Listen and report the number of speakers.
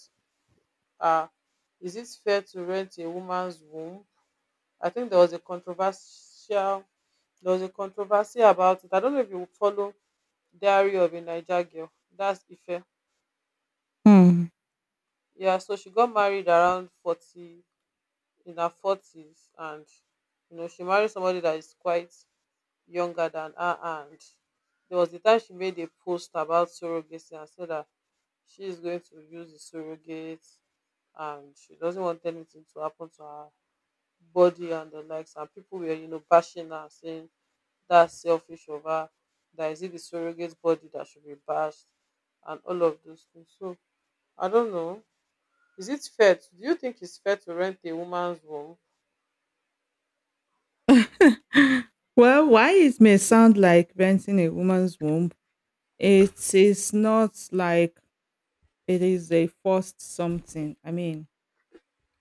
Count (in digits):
2